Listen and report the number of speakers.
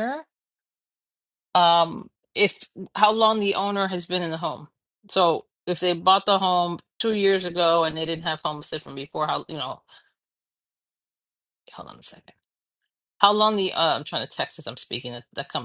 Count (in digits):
1